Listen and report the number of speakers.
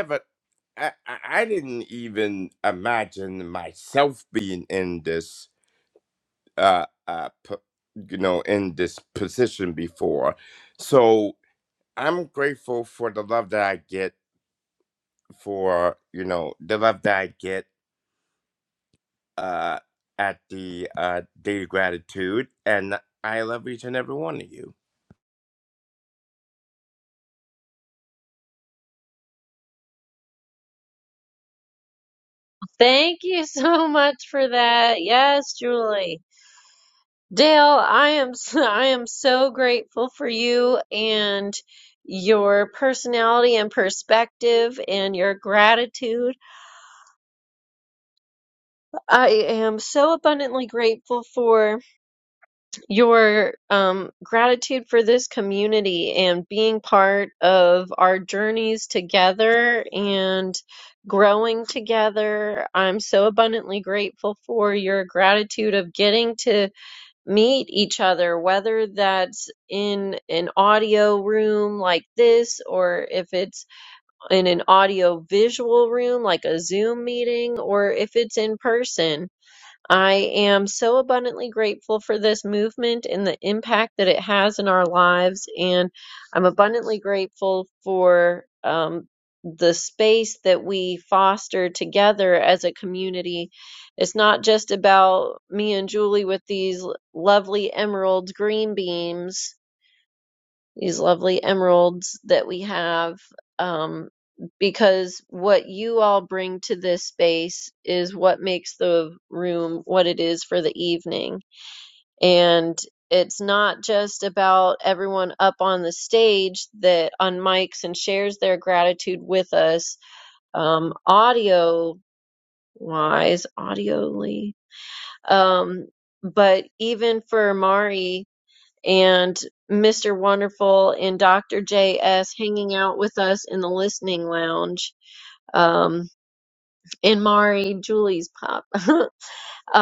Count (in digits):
2